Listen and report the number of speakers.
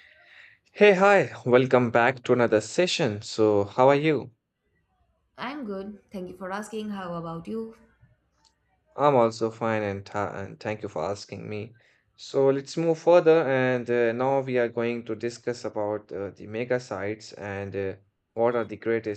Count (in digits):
2